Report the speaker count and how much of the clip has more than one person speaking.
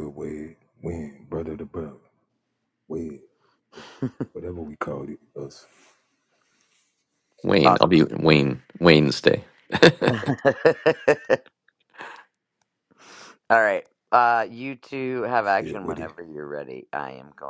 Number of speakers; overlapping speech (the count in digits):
3, about 5%